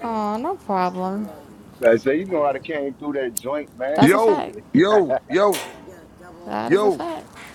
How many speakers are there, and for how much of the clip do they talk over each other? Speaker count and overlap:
3, about 10%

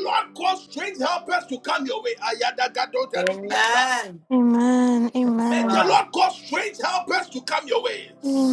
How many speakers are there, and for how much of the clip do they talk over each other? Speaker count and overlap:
3, about 10%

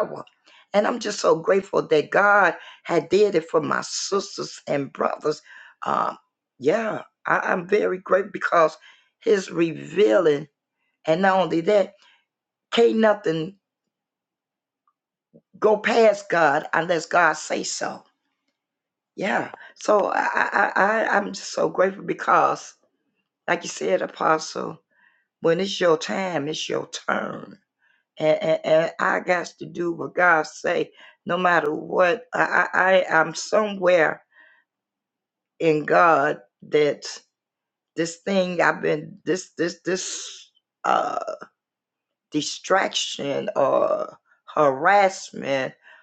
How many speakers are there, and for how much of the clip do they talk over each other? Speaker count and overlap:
1, no overlap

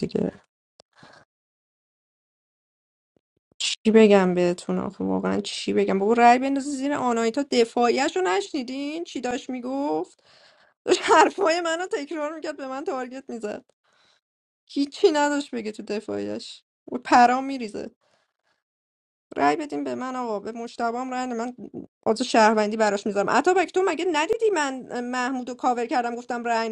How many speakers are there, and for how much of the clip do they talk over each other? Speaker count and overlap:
1, no overlap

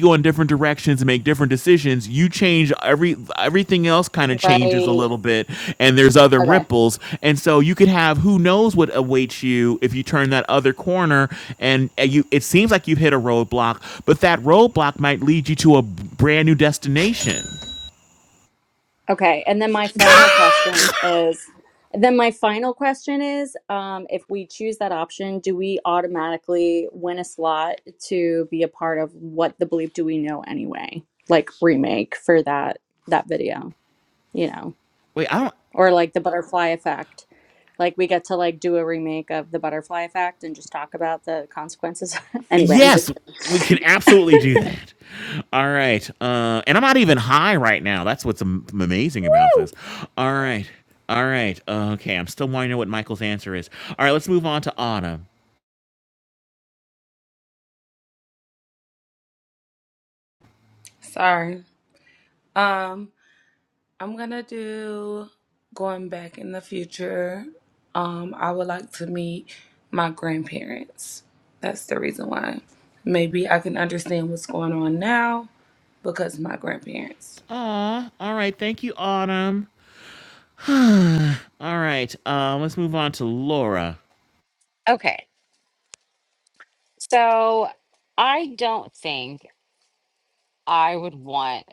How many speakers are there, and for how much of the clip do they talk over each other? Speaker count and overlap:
4, about 2%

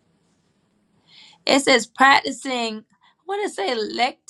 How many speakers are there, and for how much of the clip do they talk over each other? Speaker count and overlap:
1, no overlap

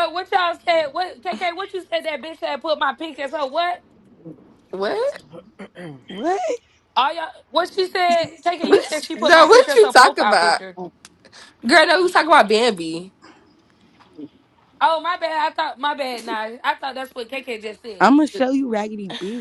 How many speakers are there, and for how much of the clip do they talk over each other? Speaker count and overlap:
3, about 11%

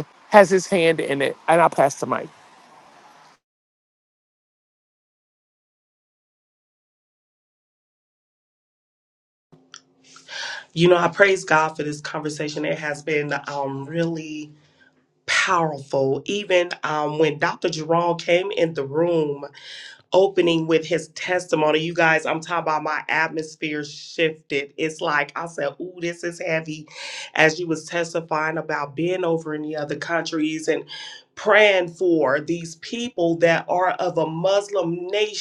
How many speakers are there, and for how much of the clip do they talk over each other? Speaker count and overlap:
2, no overlap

